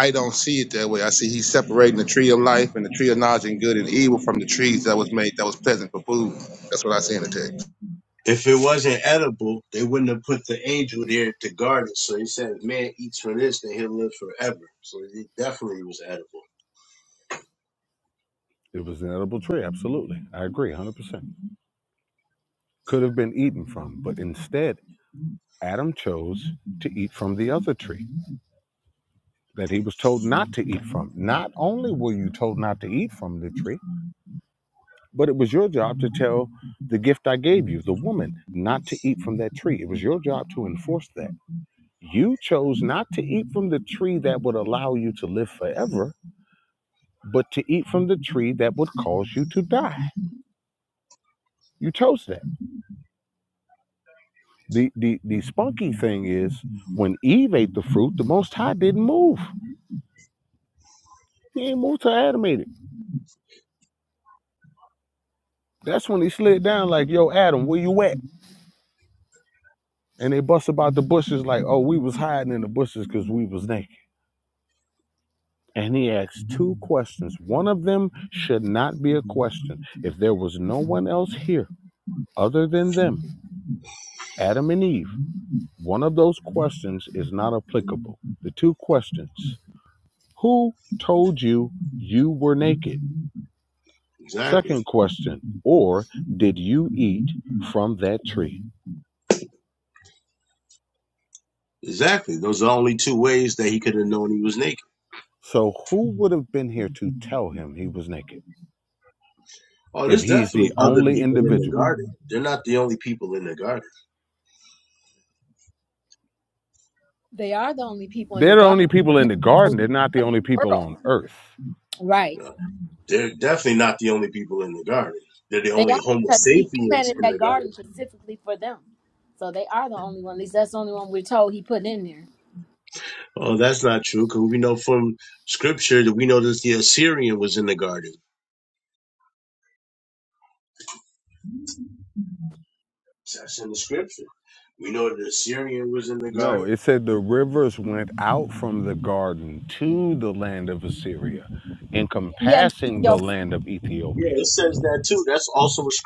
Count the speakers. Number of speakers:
4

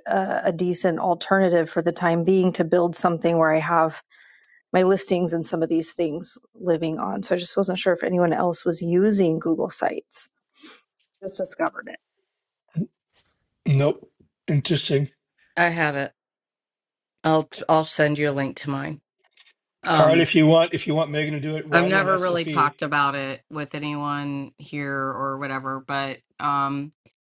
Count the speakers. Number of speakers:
3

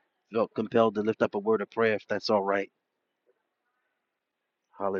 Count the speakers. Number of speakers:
1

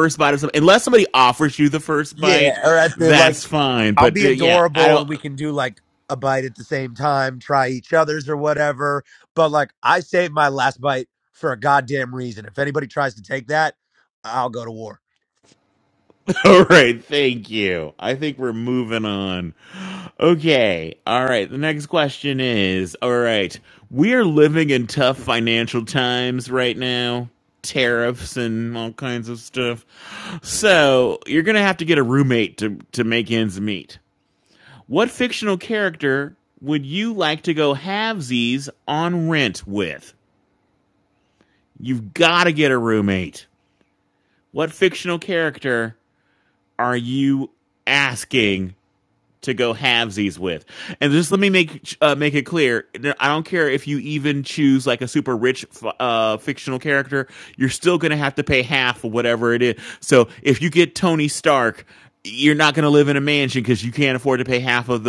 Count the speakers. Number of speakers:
2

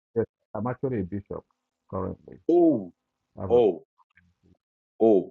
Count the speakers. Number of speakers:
2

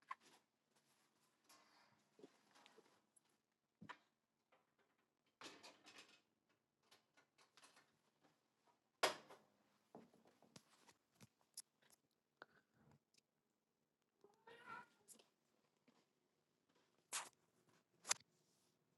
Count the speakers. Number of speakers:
0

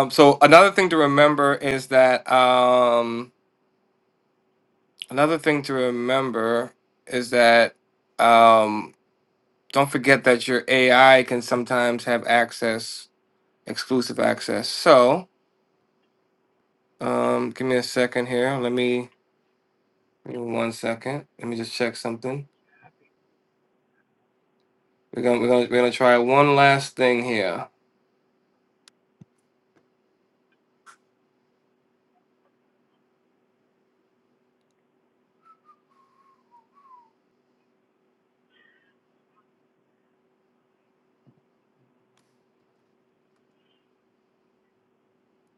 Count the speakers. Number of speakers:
1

